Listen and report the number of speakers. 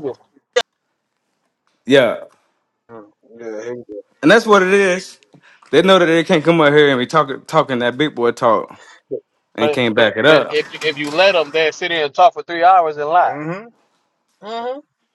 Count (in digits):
3